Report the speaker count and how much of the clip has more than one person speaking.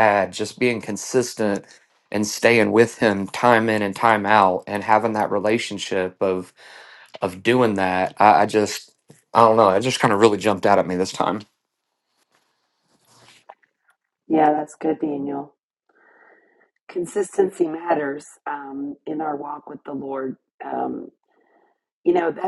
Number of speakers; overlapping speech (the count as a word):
two, no overlap